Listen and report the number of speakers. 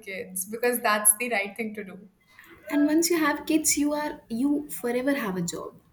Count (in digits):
2